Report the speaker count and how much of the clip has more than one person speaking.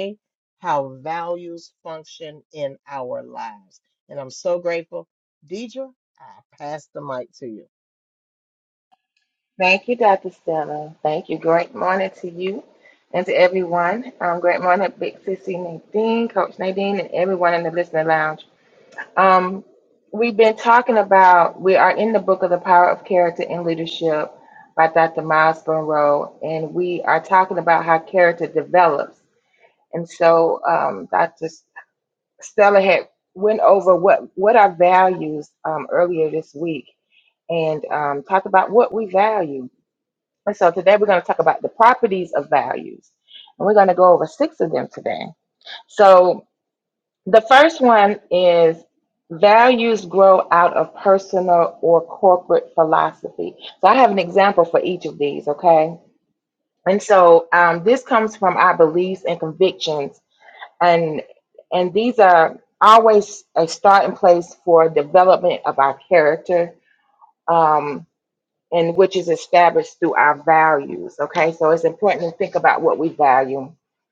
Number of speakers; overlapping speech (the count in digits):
2, no overlap